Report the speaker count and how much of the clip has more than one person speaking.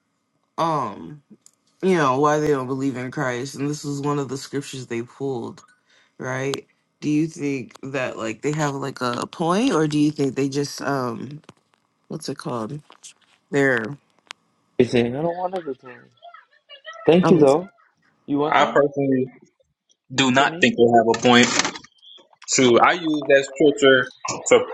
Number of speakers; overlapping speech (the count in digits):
3, about 4%